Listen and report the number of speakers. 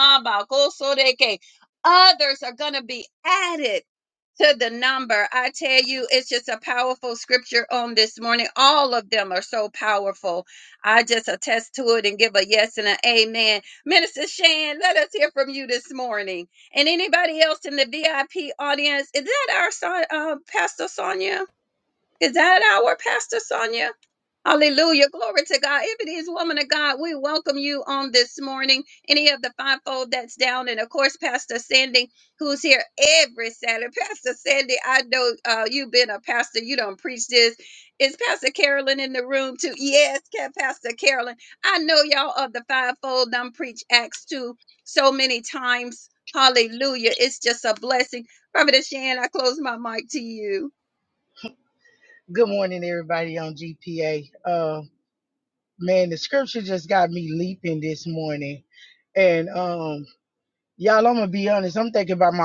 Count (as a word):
two